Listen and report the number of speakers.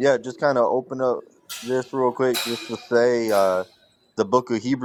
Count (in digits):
1